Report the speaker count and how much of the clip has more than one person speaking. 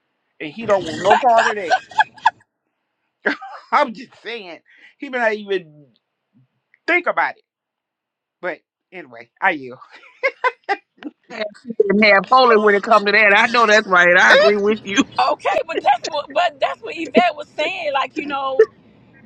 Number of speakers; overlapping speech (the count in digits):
3, about 2%